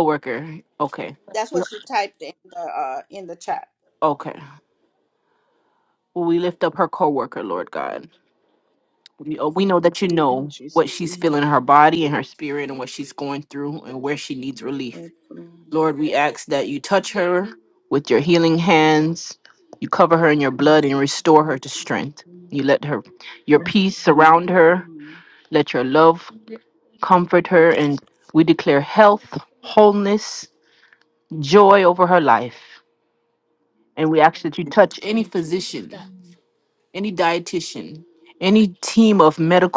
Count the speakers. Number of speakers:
three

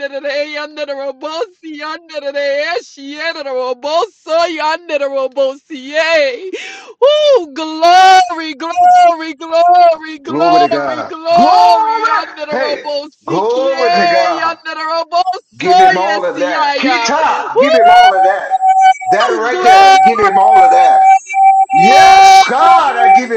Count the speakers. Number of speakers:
two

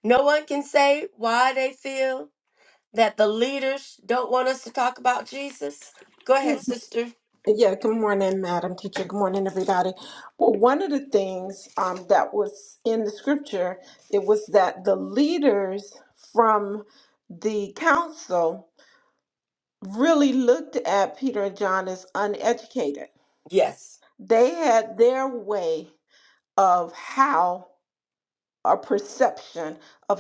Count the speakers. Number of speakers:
two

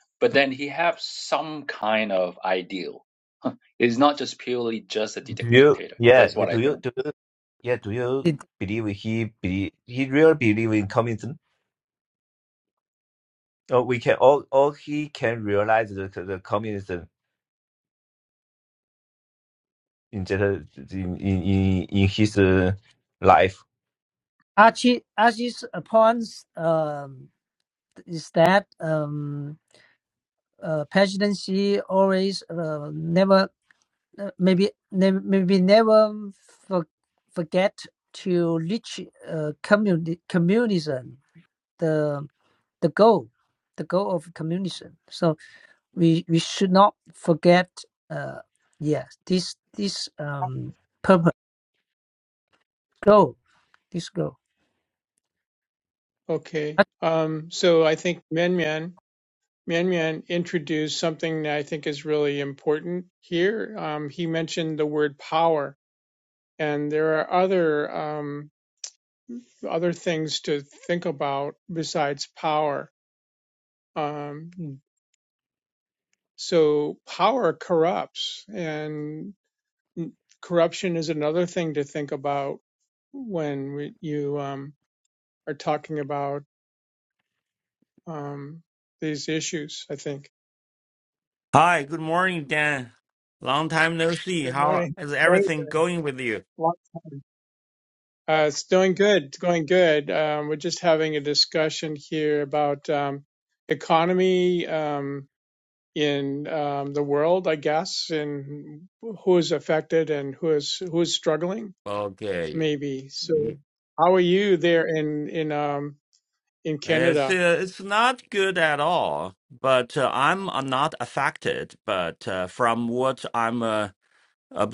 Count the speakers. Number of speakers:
five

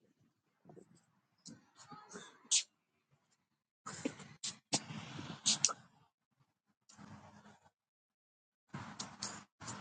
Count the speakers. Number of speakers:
zero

